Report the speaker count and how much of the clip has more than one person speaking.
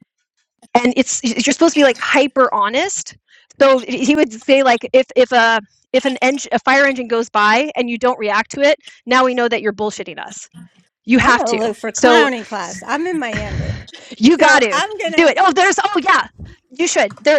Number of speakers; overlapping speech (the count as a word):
two, about 7%